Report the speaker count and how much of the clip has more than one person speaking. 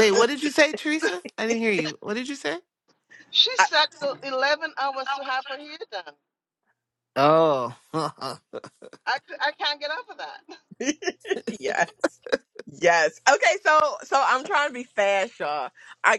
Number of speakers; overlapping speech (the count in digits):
3, no overlap